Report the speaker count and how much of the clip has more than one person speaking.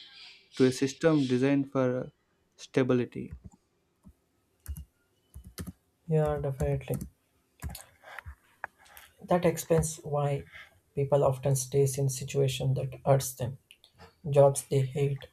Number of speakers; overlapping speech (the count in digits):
2, no overlap